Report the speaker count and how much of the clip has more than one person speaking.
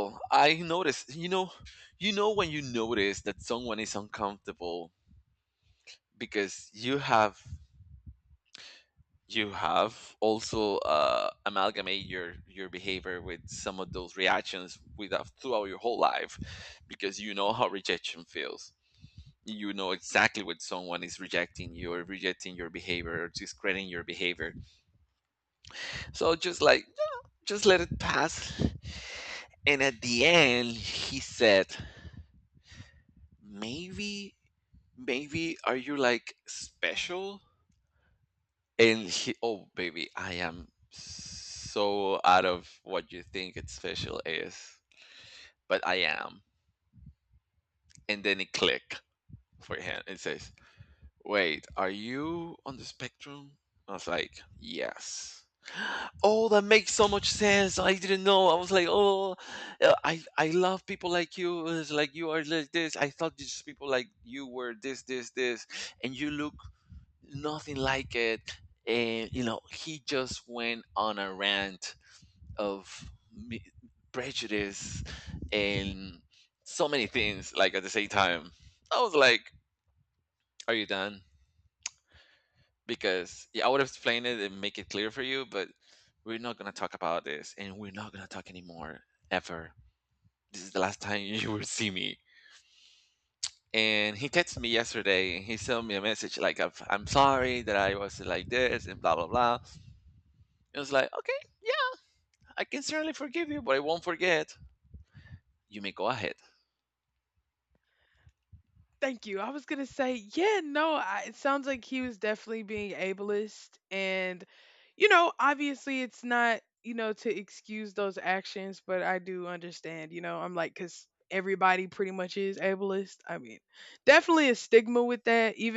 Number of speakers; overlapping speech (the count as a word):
two, no overlap